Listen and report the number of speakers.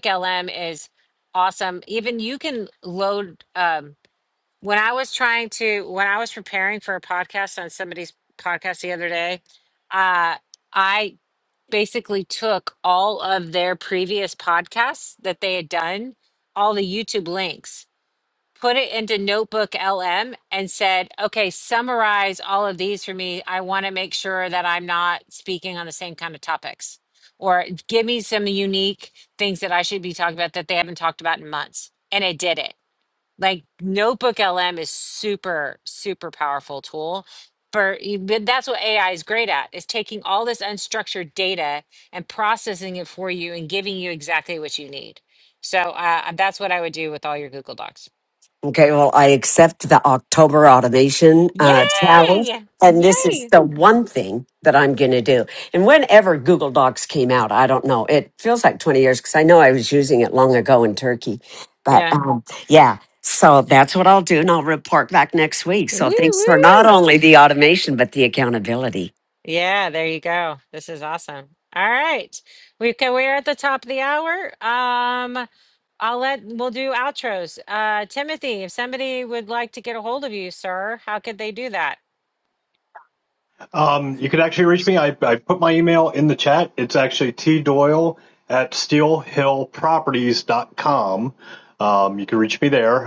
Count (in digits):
3